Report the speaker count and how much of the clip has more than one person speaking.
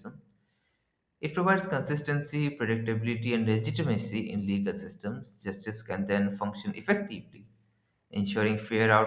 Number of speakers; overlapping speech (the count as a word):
one, no overlap